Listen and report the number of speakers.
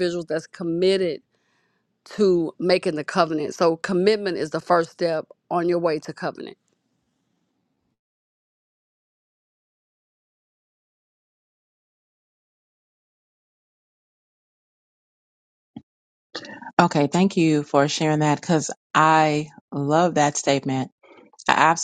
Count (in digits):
2